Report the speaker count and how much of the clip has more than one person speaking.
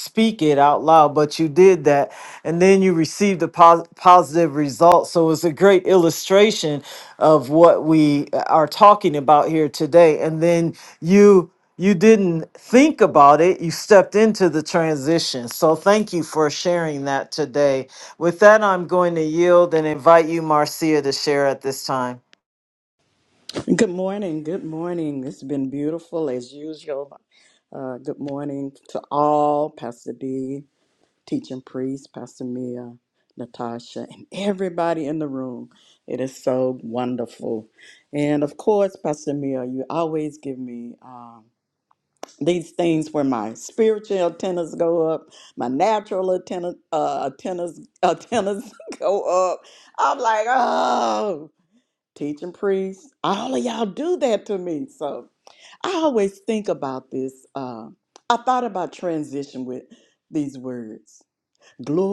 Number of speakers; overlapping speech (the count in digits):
2, no overlap